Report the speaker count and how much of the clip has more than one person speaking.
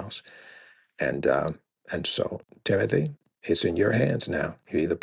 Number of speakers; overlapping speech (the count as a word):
one, no overlap